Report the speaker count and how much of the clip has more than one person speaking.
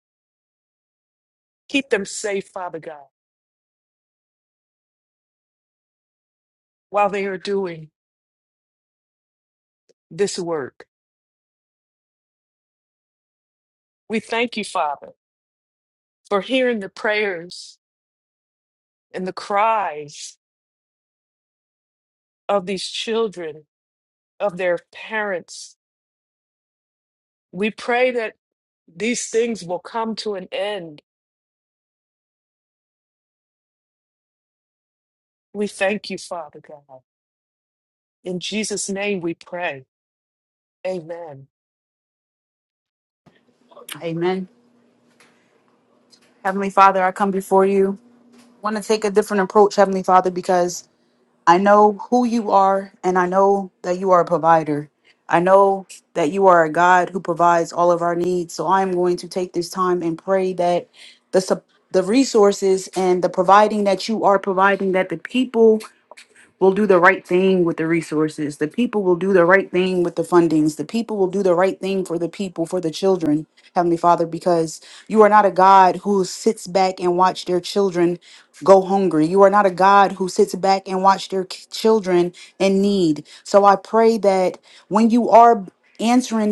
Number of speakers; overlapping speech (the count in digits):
2, no overlap